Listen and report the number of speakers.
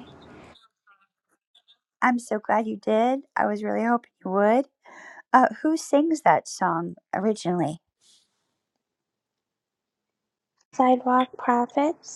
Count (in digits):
2